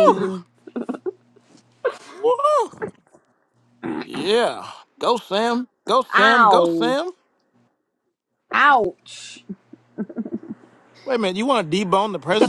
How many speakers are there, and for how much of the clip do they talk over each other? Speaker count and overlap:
two, about 9%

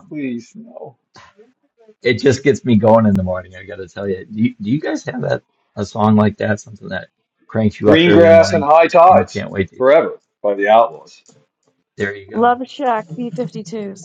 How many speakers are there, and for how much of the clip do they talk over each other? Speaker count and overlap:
three, about 8%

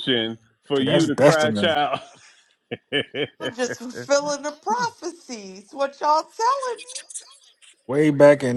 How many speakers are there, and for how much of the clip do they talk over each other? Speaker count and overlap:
three, about 12%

